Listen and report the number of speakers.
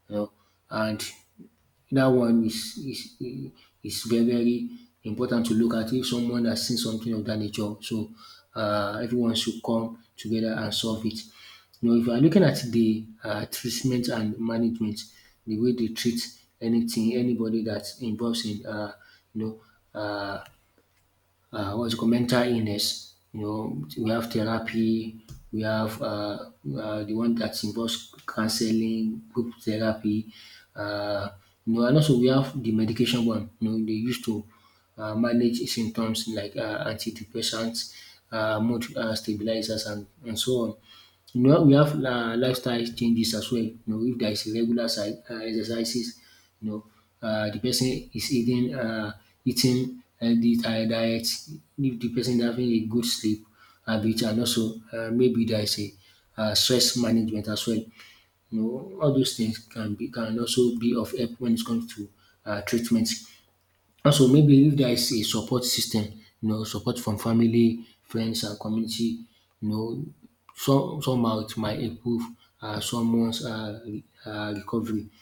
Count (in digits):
1